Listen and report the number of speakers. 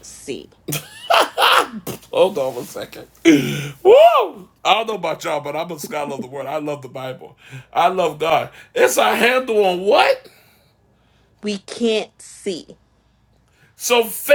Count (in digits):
2